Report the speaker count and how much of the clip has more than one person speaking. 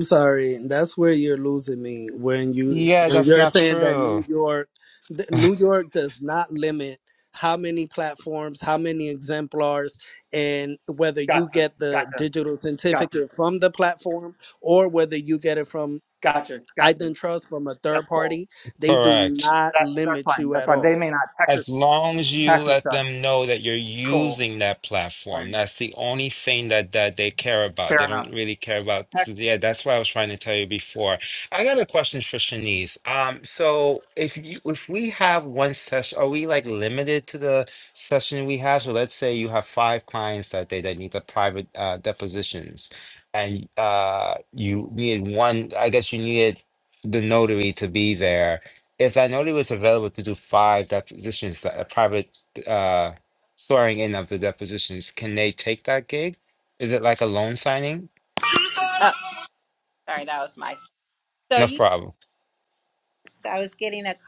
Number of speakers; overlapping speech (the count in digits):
4, about 11%